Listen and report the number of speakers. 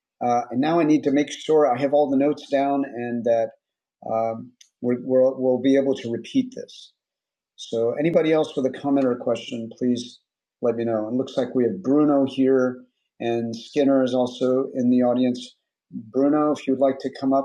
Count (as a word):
one